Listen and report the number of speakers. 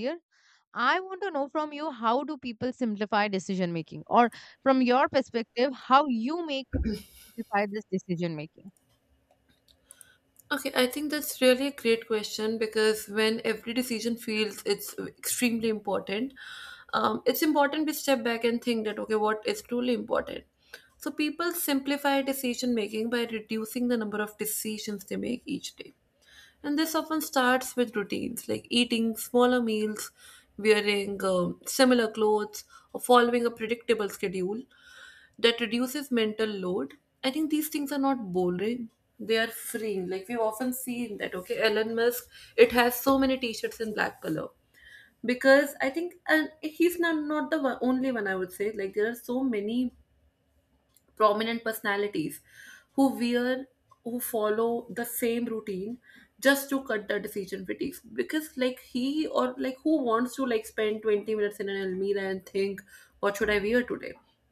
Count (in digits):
2